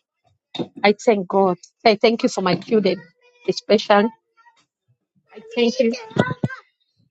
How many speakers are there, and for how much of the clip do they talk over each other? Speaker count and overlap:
1, no overlap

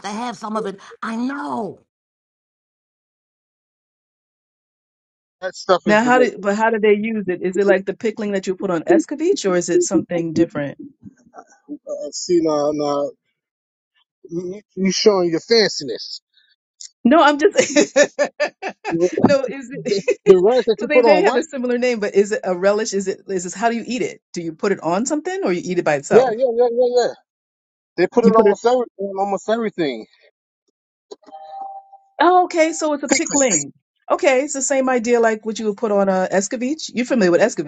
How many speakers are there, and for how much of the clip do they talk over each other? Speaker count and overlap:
3, about 5%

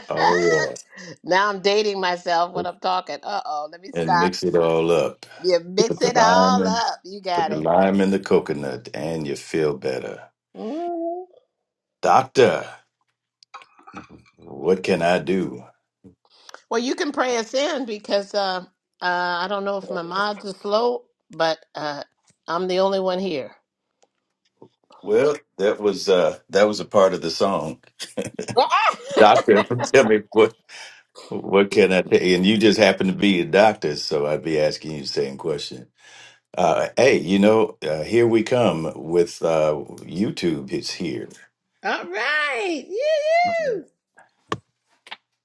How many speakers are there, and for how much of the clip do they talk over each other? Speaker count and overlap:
2, about 4%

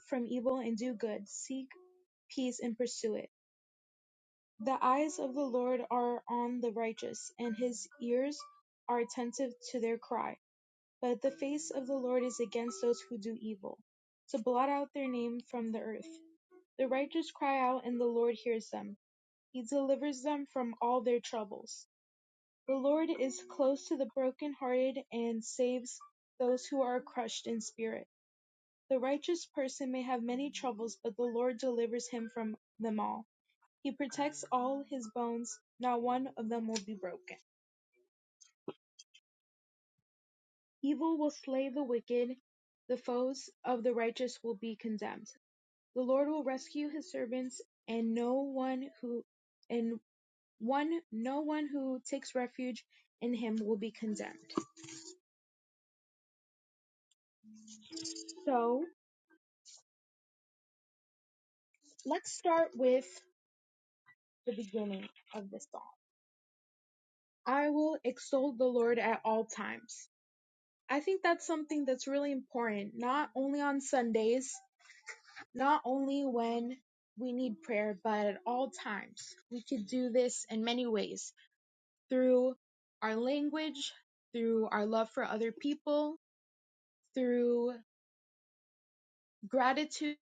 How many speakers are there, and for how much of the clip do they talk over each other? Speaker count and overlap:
1, no overlap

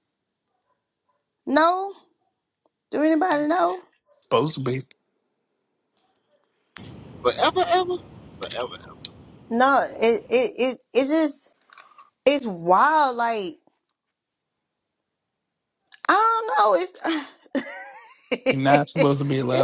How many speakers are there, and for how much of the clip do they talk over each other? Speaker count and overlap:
3, about 1%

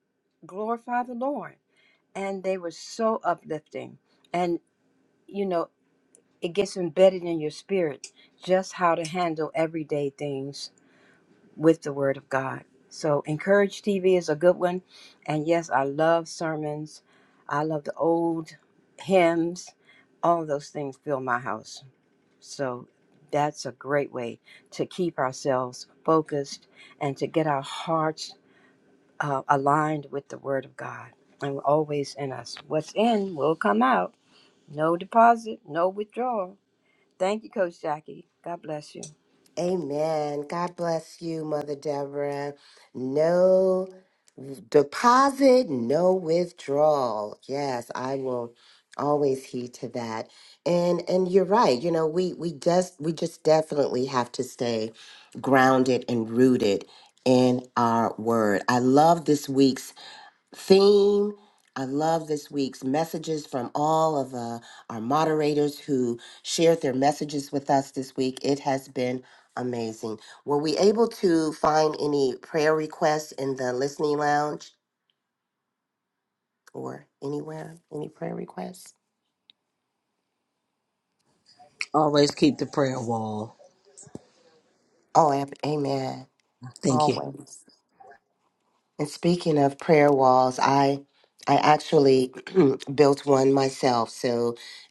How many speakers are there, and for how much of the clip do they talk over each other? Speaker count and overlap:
3, under 1%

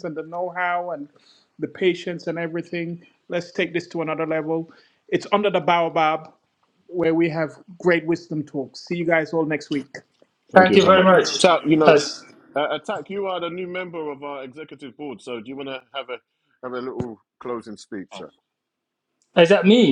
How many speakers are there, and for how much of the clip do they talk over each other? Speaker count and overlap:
3, about 7%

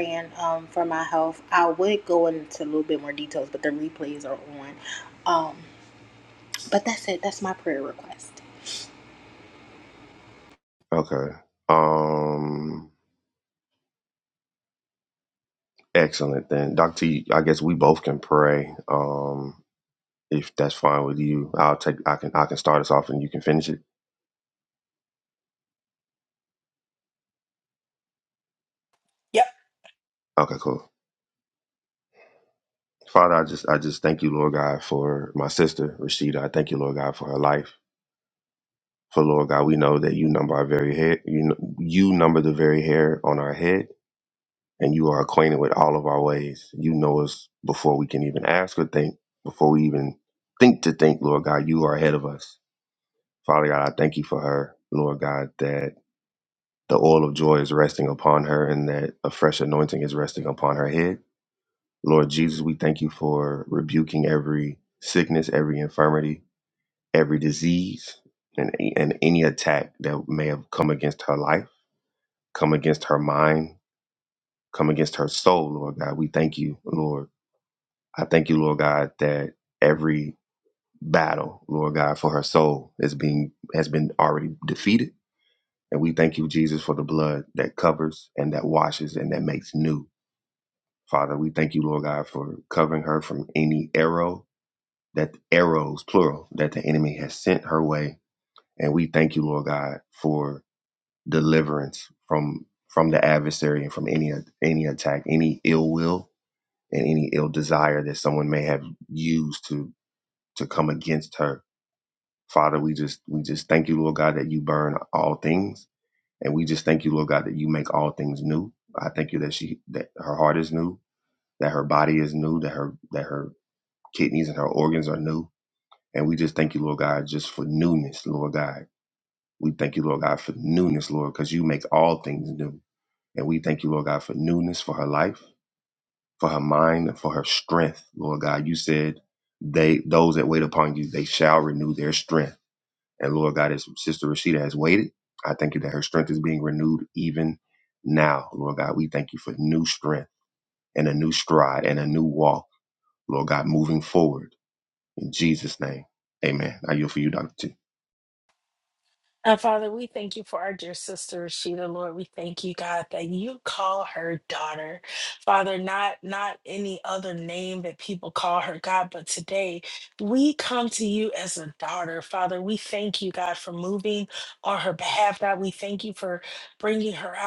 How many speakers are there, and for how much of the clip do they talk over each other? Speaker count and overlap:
3, no overlap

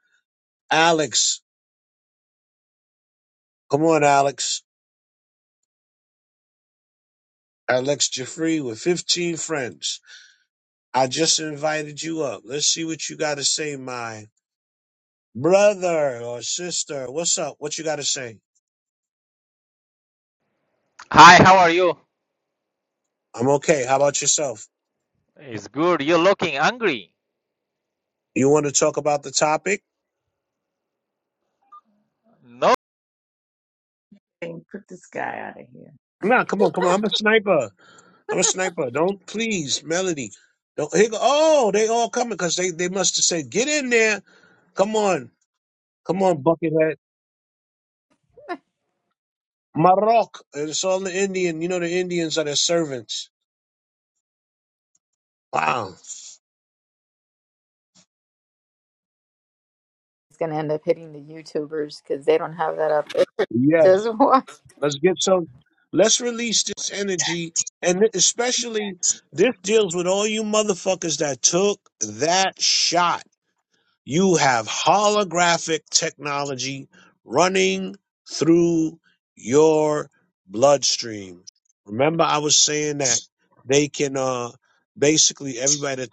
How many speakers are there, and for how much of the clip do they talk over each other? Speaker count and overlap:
4, under 1%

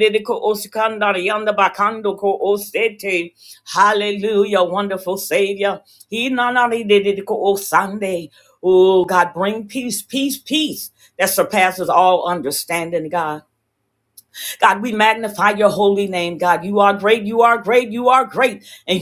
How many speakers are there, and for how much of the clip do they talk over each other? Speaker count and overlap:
1, no overlap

